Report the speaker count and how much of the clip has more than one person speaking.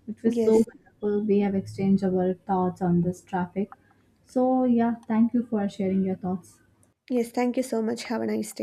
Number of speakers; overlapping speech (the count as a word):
two, about 4%